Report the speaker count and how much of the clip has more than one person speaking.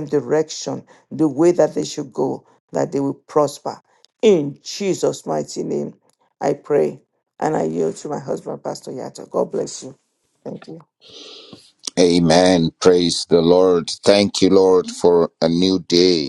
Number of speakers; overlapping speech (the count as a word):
two, no overlap